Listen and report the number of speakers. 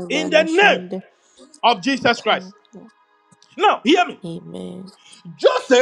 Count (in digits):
2